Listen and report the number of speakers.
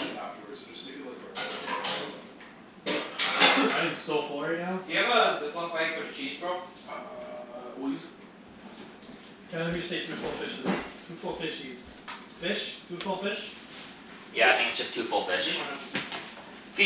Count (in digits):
4